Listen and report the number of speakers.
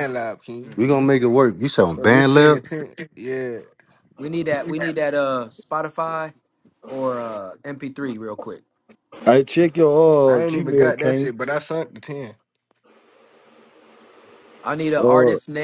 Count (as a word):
four